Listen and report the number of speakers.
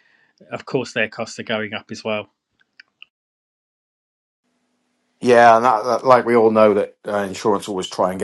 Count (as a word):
two